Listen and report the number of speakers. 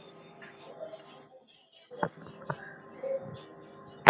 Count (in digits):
0